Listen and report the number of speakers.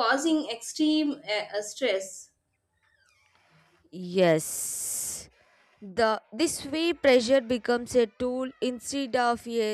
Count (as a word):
two